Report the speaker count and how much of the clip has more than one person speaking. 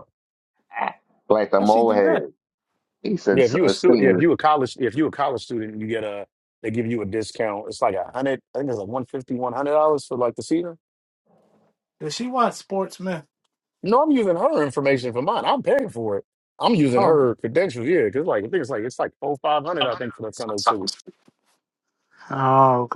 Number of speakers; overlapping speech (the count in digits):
3, about 8%